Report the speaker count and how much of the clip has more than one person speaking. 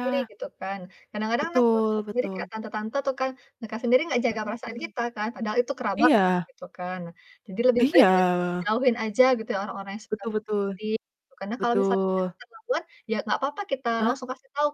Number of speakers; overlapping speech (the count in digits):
2, about 23%